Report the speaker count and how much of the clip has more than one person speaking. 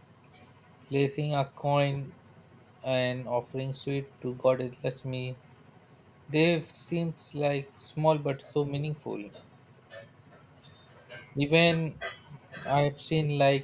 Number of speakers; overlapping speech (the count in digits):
1, no overlap